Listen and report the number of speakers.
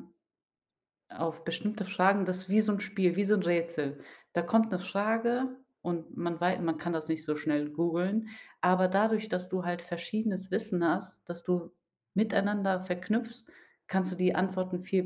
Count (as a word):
one